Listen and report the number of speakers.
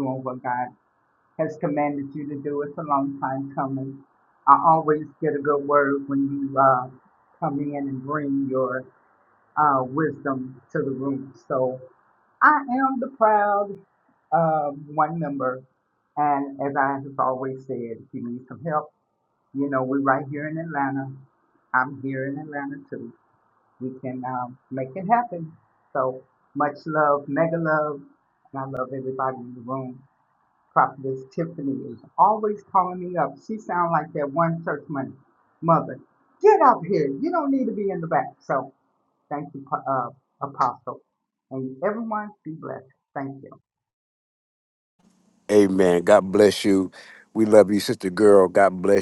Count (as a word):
two